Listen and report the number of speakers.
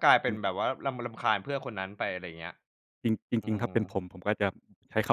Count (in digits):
2